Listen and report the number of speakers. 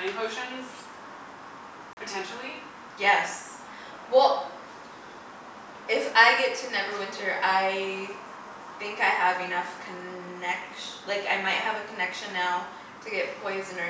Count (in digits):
2